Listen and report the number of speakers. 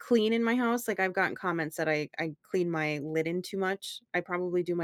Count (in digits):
1